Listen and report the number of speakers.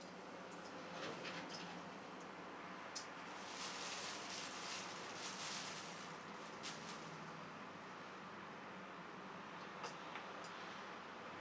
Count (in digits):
1